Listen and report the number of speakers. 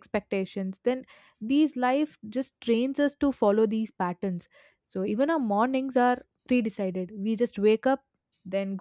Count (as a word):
one